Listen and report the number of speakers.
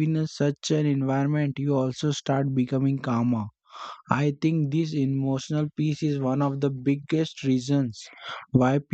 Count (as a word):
one